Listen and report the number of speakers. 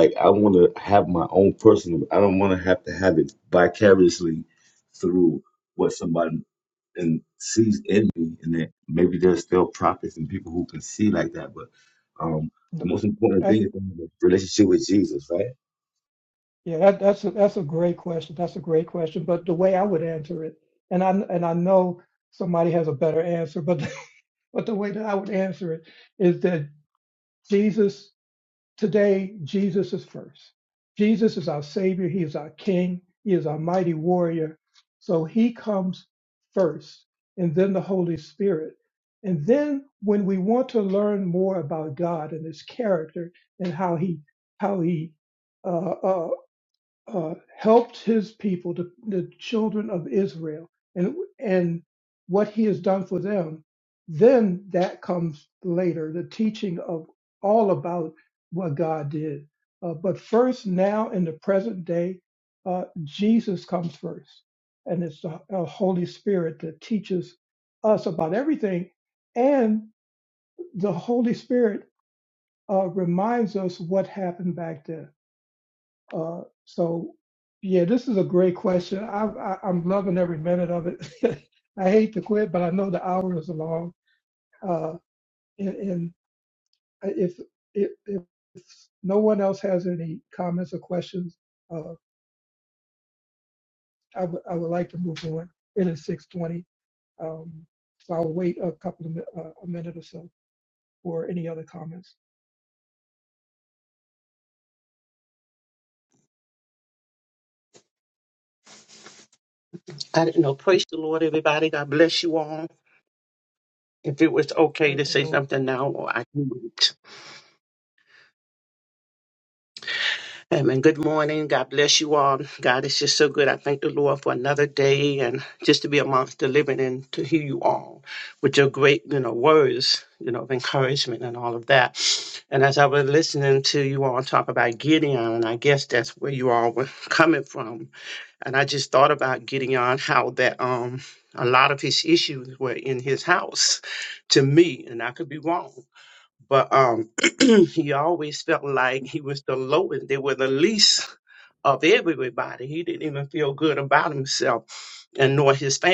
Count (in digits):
3